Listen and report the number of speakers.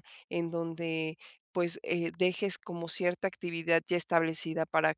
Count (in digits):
1